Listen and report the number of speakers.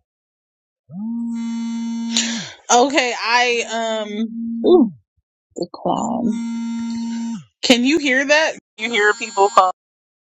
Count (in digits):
1